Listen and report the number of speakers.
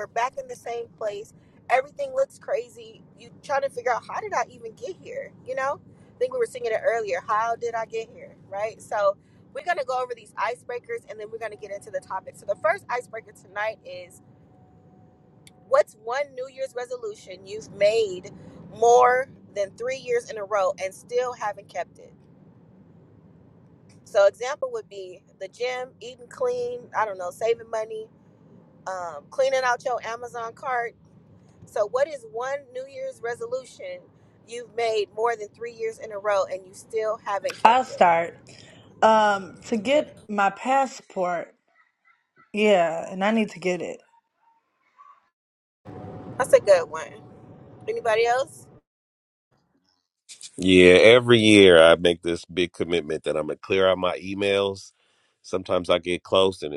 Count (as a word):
three